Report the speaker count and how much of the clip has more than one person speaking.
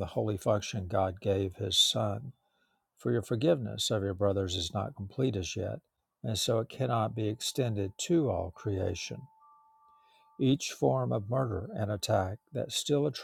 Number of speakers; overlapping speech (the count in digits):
1, no overlap